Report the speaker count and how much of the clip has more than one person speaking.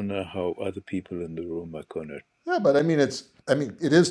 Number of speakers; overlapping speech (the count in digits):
2, no overlap